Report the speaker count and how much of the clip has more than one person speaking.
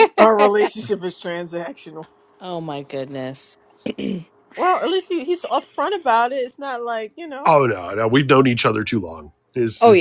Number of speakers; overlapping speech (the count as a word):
three, about 3%